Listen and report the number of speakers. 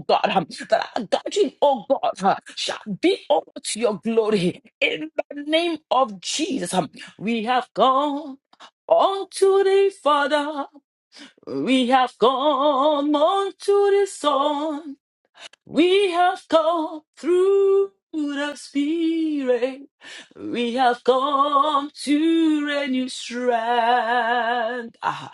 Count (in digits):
1